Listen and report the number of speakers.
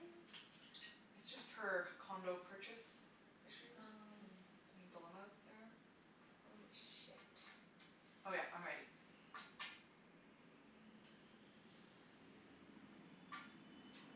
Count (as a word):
two